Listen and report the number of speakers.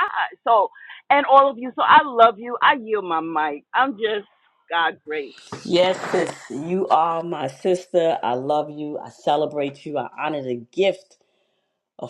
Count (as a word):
two